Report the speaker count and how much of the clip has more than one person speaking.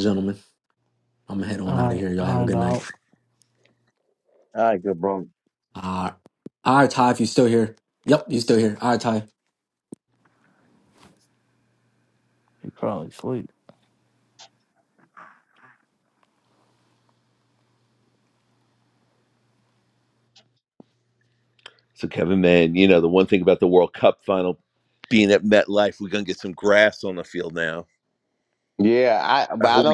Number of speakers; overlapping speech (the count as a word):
four, about 5%